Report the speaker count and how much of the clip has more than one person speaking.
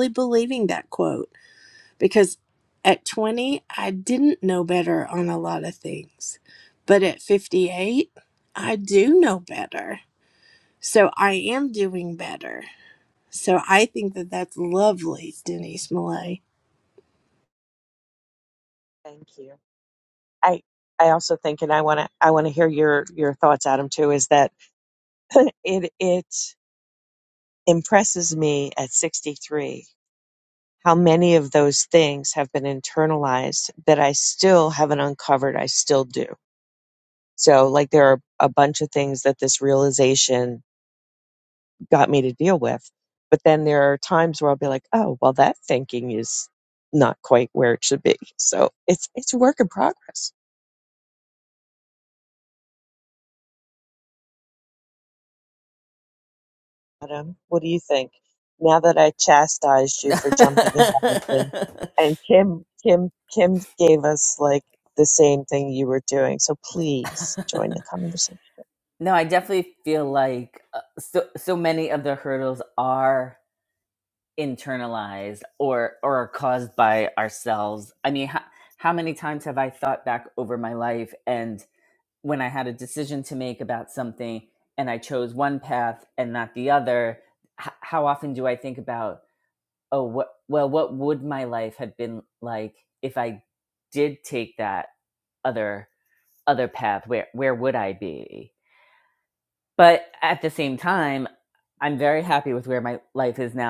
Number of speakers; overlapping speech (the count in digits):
3, no overlap